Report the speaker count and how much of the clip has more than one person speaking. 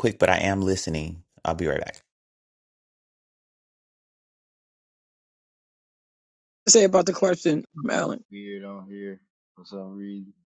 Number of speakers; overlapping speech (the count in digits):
3, about 2%